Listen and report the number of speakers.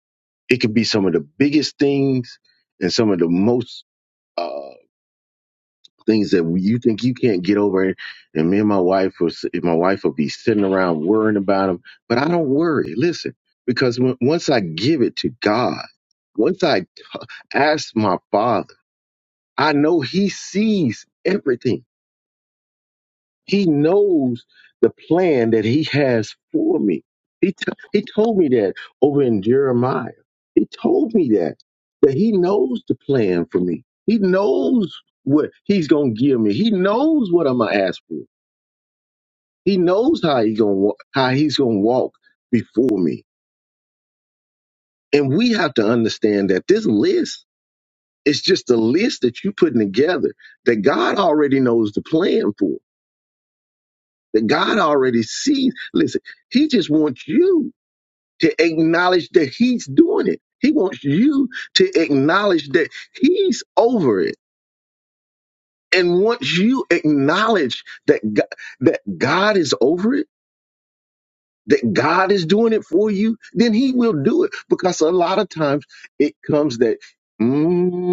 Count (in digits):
1